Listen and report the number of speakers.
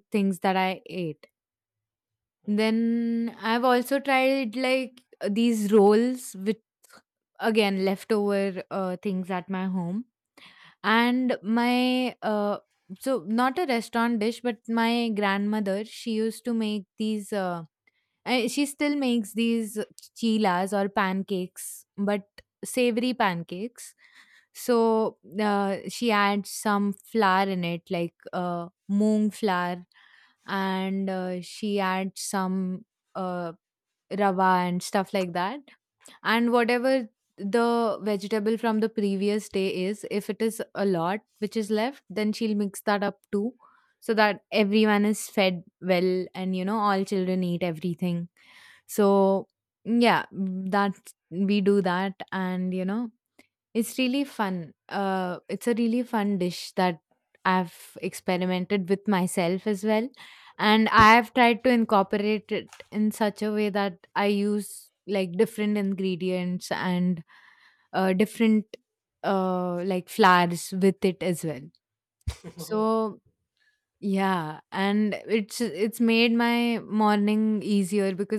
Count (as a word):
one